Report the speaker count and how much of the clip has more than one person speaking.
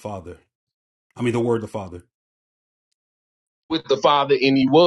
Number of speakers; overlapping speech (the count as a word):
two, no overlap